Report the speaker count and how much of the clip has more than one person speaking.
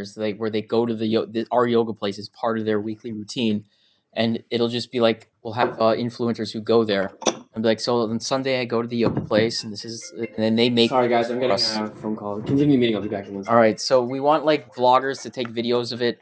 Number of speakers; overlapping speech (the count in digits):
2, about 8%